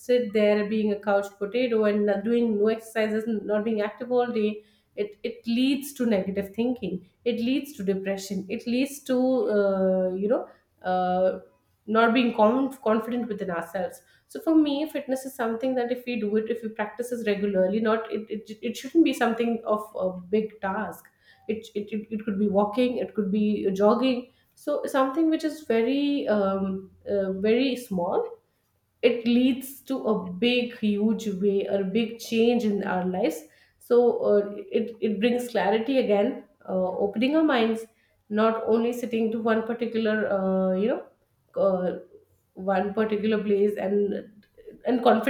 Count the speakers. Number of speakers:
1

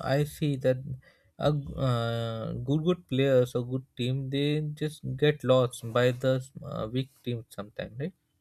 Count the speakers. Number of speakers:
1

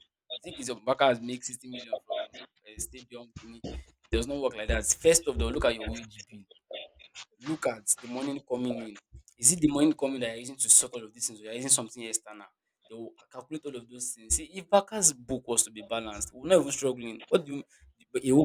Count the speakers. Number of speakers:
1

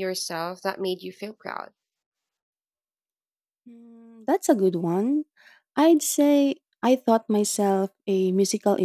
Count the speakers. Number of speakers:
2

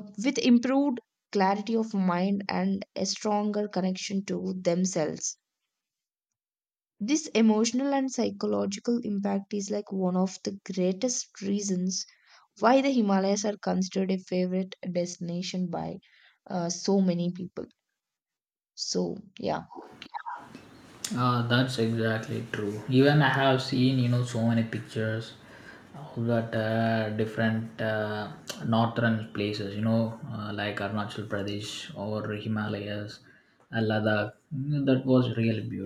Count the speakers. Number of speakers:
2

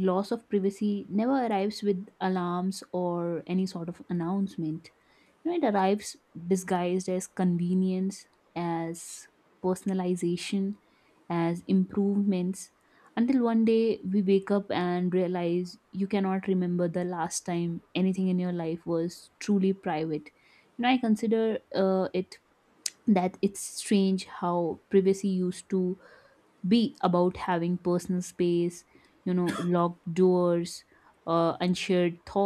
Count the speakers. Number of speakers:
1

